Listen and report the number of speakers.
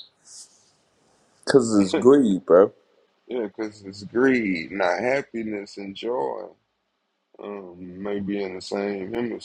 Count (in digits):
2